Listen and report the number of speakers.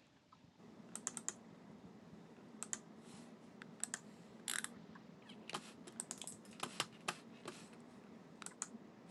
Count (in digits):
0